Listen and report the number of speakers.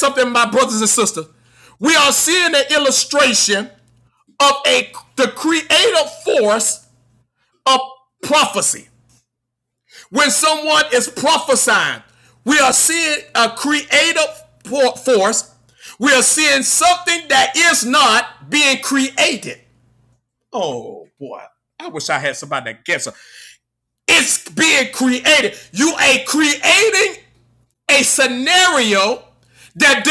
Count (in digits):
1